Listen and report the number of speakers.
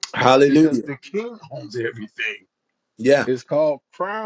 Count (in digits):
2